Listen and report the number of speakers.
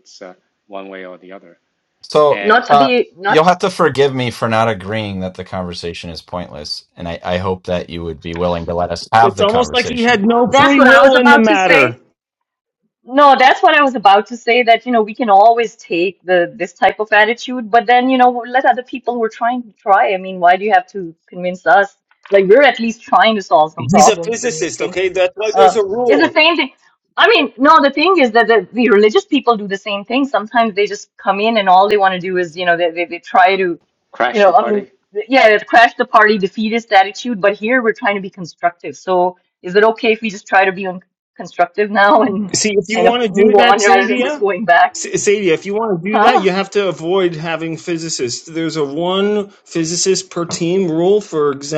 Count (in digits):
4